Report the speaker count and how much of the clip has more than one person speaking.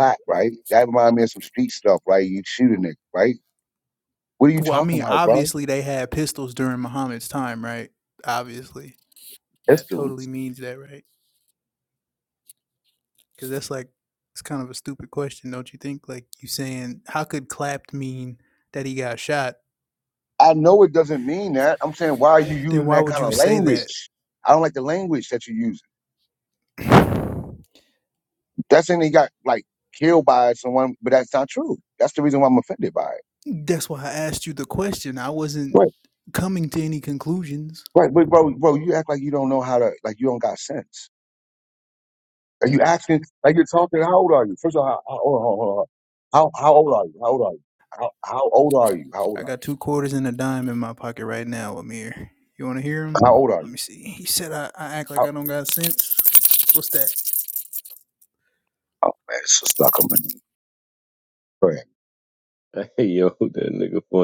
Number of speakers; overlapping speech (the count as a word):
three, about 5%